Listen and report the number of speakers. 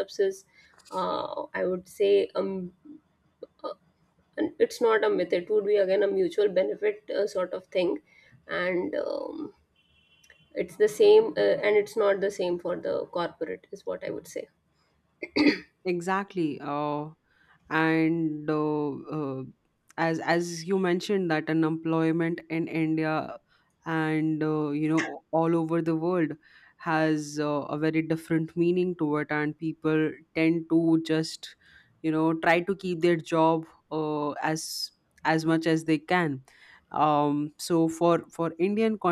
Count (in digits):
2